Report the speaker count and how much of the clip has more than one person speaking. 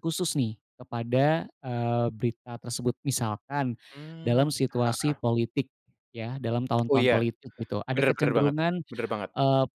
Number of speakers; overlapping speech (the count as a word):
two, about 18%